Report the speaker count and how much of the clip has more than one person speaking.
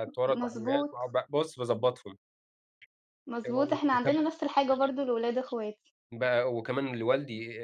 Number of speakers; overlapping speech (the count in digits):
2, about 13%